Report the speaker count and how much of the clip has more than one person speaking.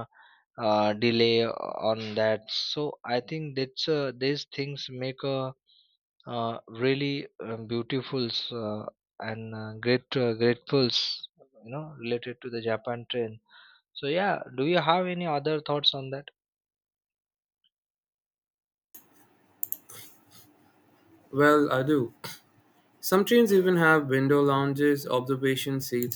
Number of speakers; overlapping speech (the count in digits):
2, no overlap